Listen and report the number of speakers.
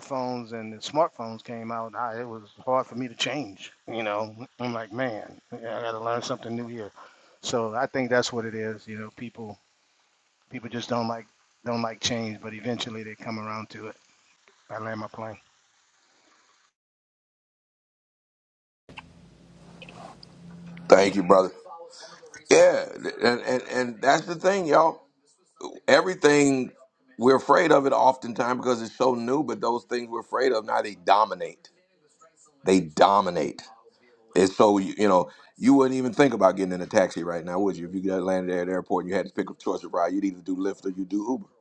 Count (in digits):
2